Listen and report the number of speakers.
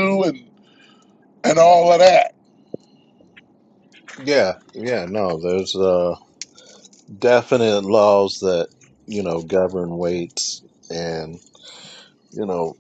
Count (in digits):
2